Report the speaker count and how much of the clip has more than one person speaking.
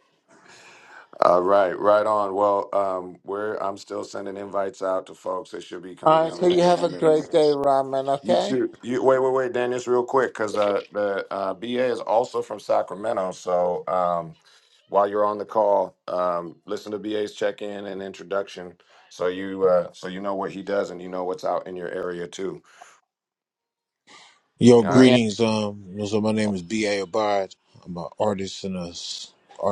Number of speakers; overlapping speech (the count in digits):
3, about 6%